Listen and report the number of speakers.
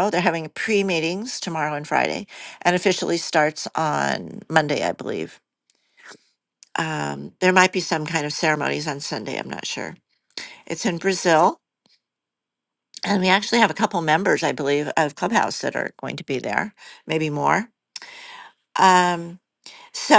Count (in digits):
1